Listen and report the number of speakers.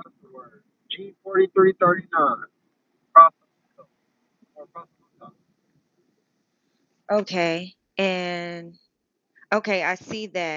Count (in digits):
2